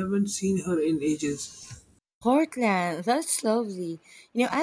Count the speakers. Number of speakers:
two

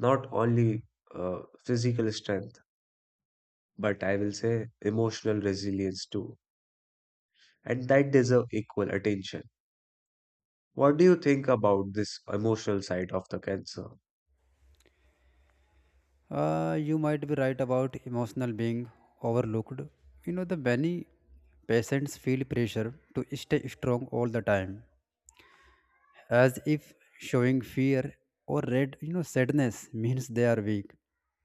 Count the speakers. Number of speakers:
two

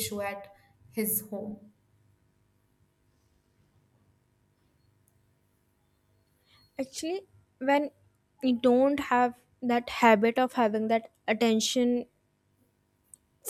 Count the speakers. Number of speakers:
two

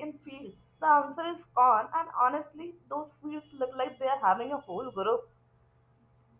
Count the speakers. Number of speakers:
one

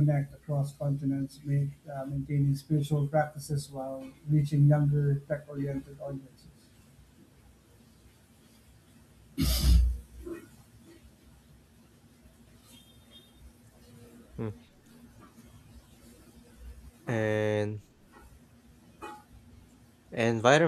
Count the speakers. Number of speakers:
two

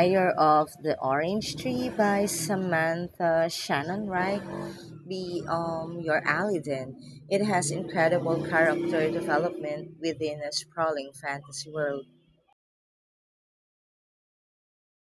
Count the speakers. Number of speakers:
one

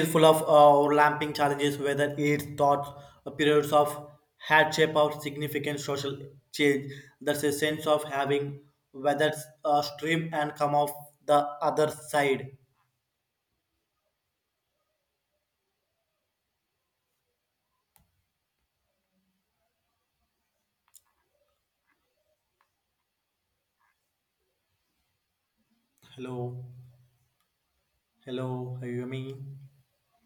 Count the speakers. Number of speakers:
one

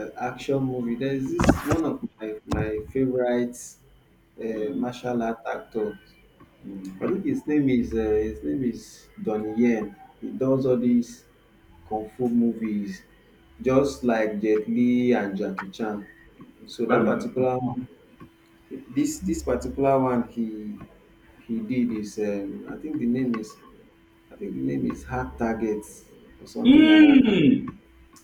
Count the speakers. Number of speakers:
two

